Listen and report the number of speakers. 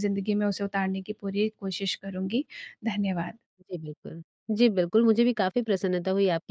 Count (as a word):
two